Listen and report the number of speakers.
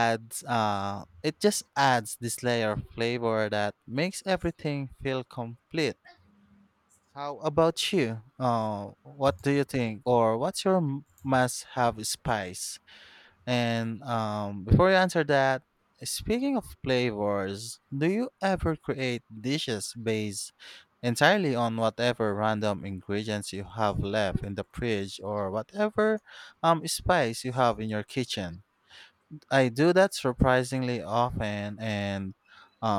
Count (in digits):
1